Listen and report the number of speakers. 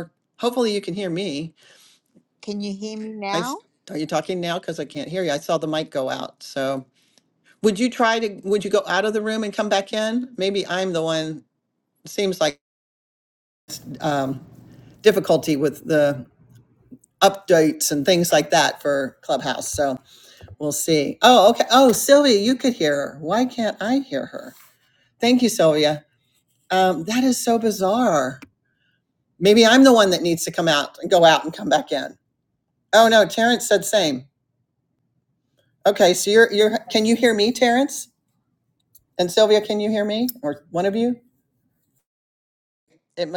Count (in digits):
2